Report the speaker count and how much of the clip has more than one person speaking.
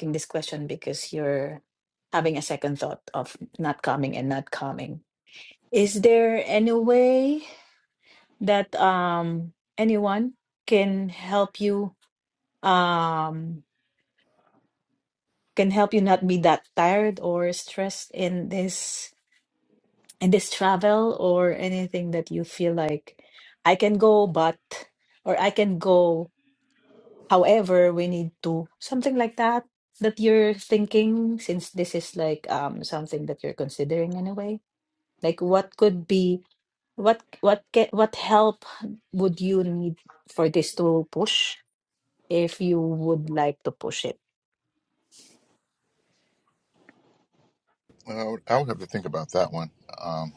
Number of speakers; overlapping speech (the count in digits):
2, no overlap